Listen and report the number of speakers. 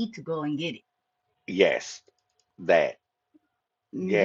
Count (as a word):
two